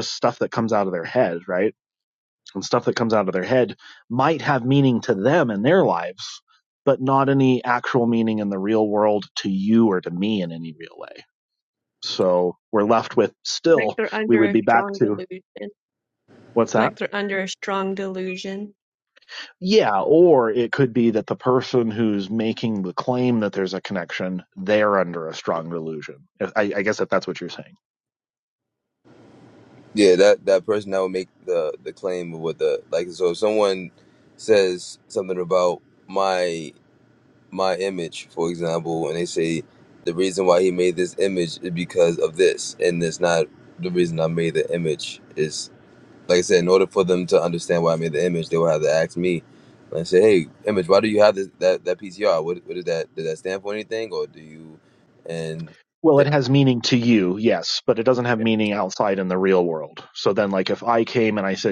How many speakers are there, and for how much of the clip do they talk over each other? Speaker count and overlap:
3, about 2%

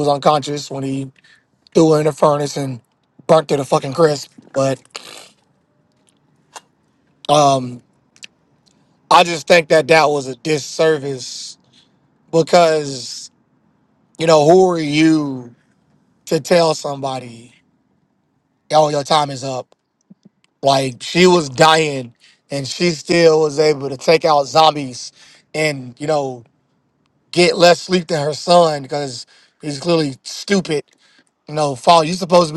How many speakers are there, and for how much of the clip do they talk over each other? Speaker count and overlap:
1, no overlap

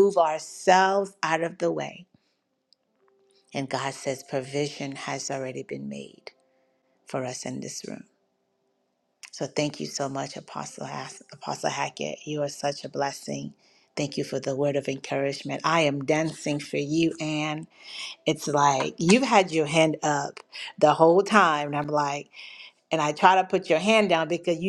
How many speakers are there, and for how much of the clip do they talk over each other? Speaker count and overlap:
1, no overlap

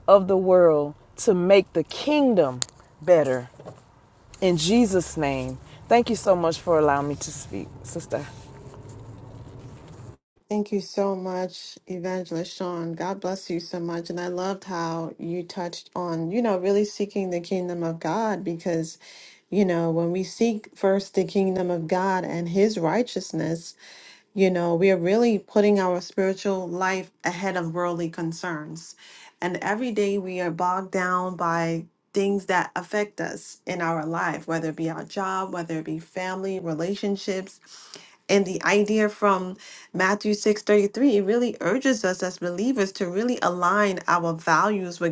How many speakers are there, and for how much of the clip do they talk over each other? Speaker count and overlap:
2, no overlap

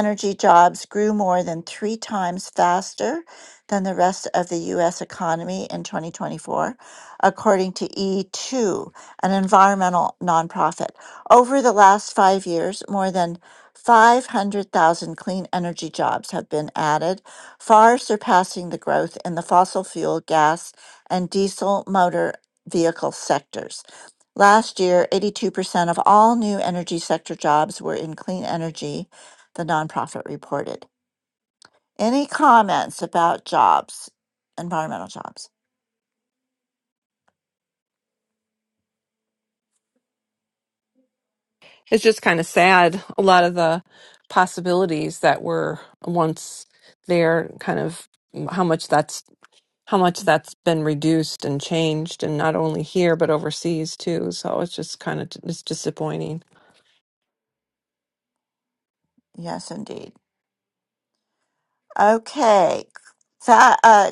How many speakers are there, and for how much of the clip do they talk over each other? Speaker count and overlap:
2, no overlap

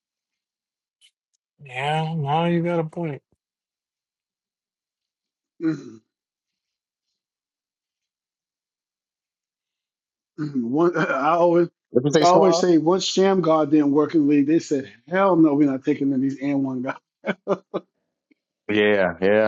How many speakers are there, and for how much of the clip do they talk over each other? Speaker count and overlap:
3, about 2%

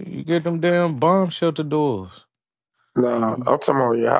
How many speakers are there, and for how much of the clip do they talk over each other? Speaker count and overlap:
2, no overlap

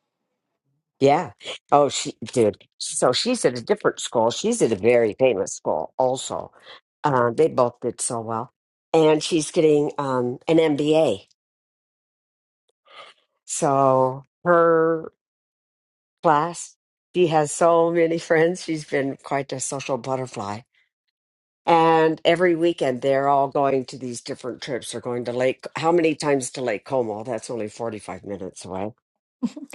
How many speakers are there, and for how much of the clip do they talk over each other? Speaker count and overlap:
1, no overlap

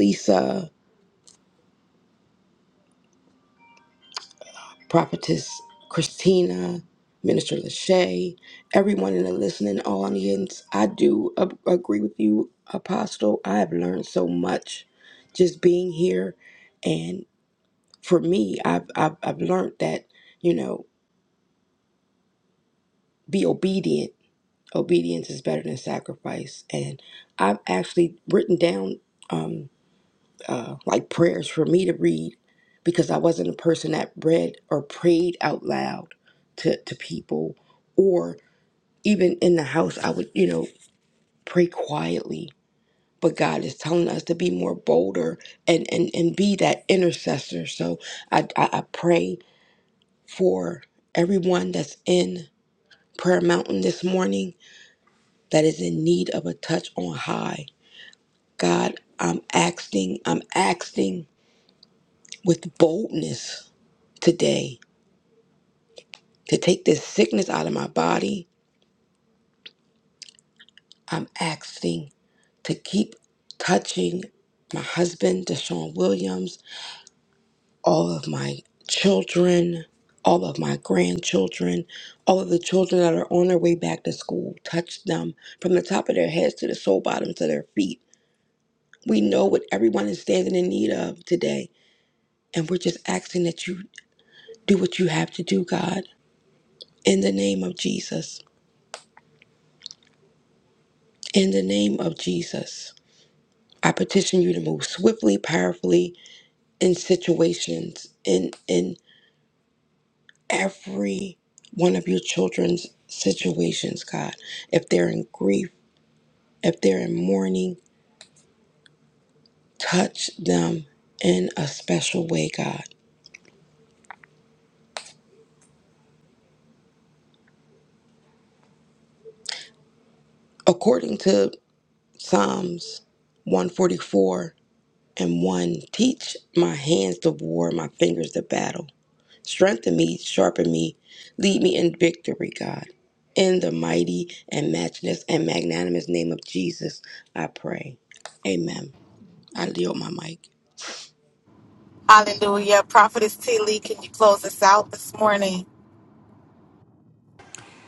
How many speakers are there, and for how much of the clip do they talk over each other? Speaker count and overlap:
2, no overlap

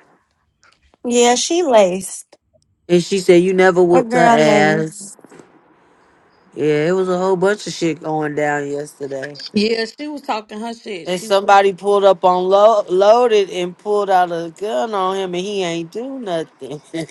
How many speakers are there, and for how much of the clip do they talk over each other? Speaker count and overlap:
3, about 8%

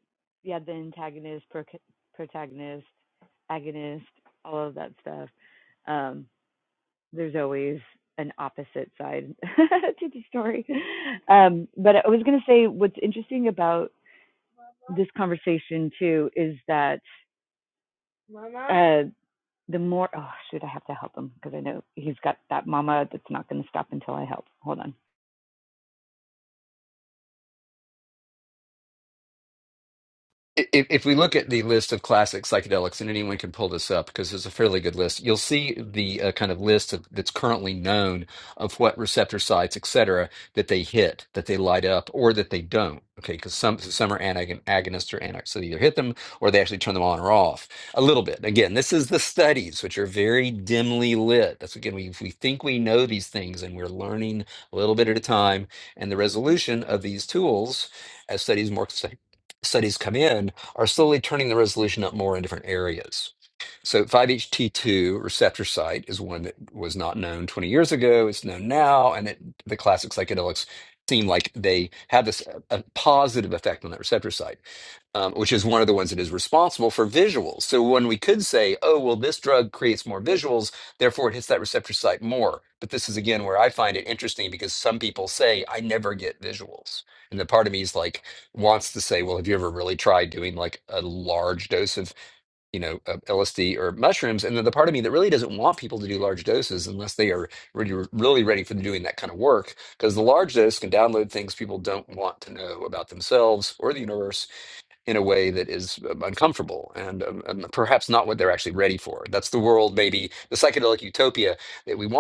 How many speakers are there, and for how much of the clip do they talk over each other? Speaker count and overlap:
2, no overlap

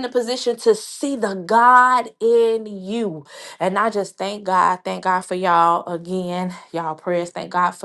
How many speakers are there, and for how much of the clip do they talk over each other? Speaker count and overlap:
1, no overlap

